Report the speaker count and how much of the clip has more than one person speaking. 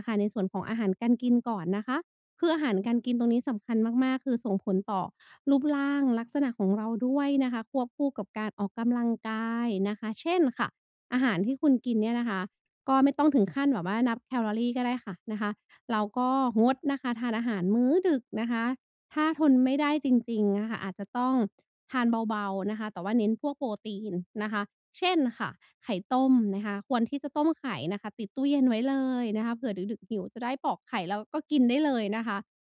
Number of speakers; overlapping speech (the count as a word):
one, no overlap